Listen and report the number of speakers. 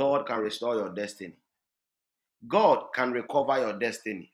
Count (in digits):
1